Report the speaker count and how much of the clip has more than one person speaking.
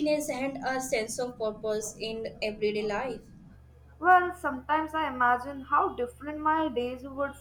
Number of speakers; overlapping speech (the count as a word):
two, no overlap